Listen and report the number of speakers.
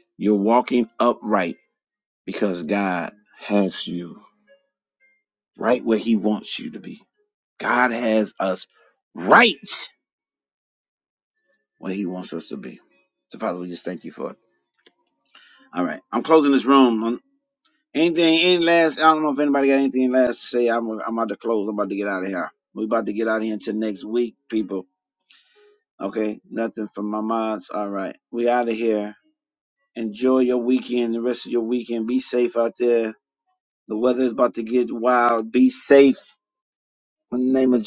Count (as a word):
one